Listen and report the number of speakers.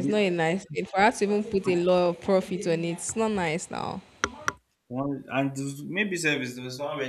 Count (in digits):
2